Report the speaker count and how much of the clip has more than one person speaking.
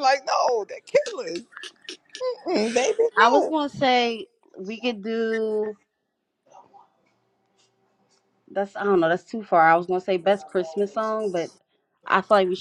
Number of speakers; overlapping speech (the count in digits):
2, about 3%